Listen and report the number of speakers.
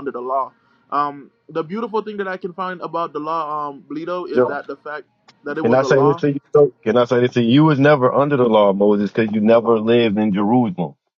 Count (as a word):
two